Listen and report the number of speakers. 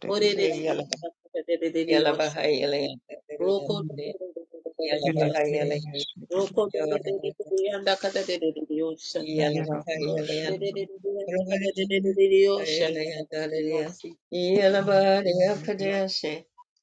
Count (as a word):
three